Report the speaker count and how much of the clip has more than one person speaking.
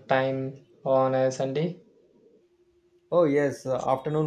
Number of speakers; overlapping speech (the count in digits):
2, no overlap